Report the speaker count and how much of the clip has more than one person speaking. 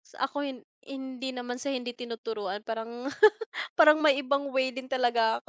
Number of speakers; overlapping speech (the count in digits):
1, no overlap